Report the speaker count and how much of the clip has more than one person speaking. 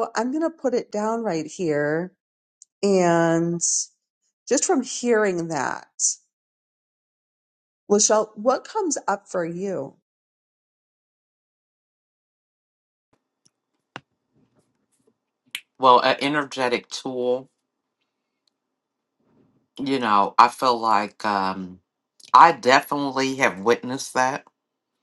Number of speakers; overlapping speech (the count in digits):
2, no overlap